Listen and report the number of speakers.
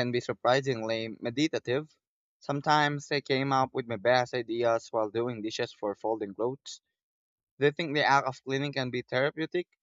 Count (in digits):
1